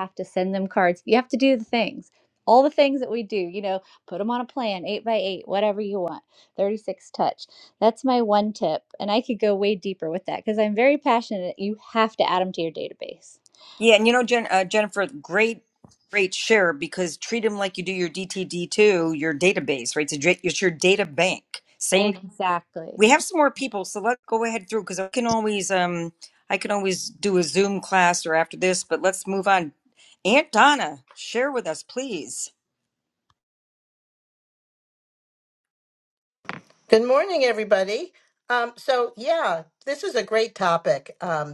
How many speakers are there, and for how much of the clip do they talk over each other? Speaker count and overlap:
3, about 1%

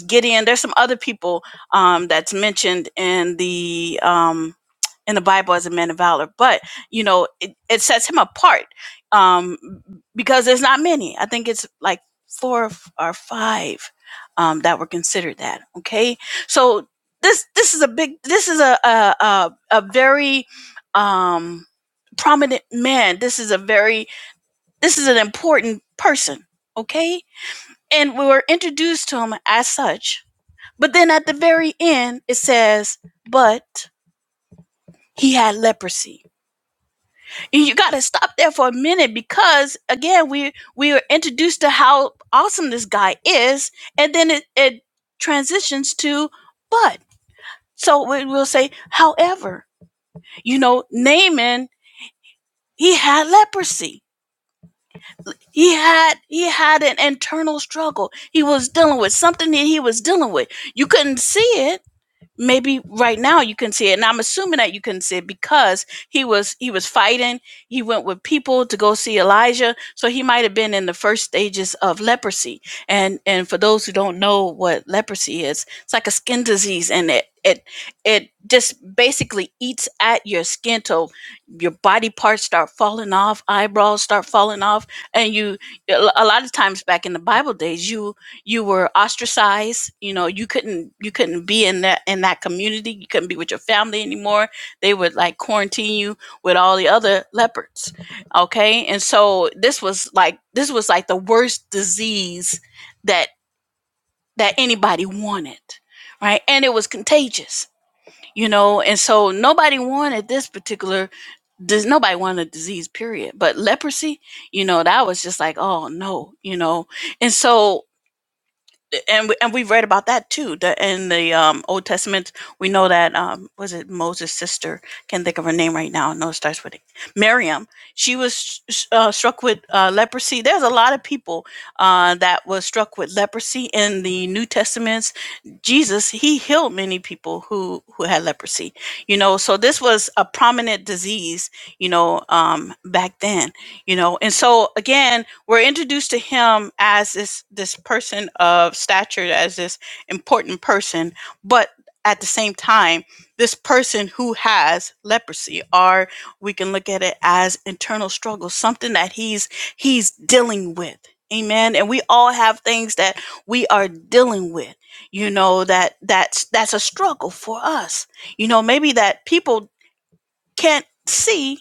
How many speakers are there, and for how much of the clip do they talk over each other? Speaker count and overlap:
1, no overlap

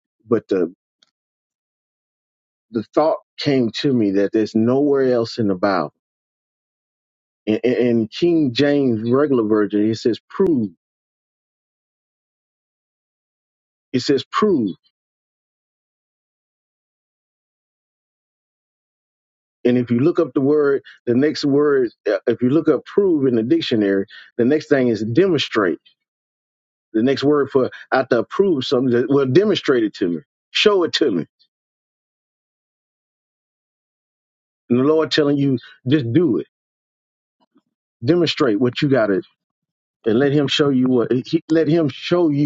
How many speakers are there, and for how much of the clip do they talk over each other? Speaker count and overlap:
1, no overlap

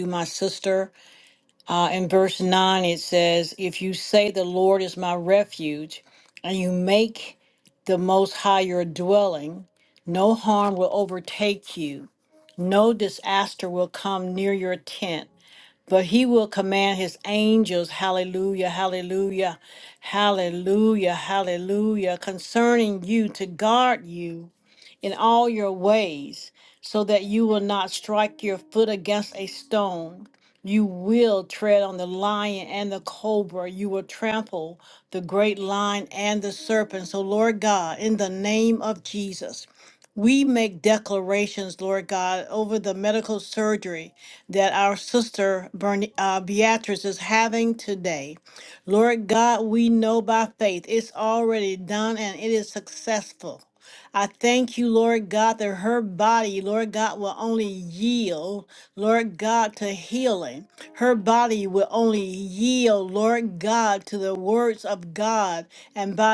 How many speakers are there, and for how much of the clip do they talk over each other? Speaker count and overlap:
1, no overlap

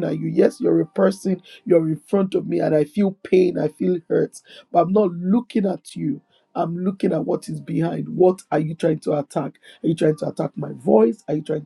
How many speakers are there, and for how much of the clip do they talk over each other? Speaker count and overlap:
1, no overlap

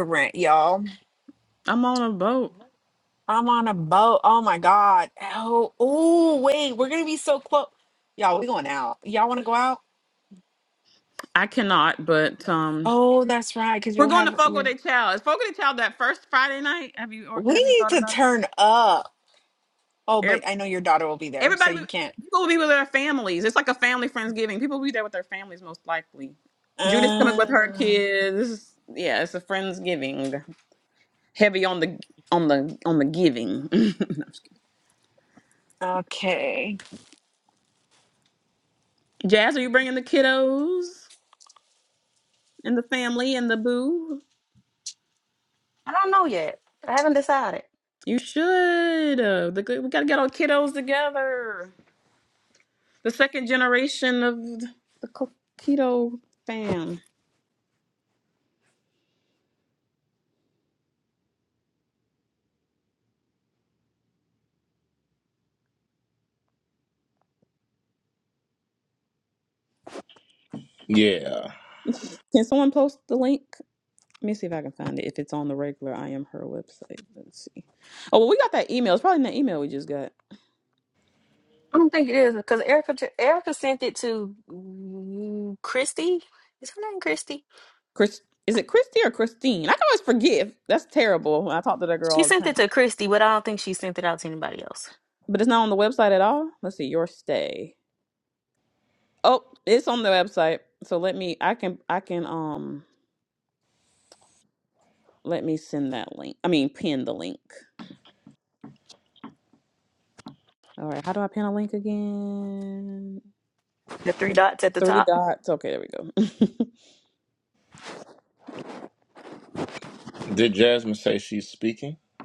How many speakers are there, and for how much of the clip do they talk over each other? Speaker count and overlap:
4, about 3%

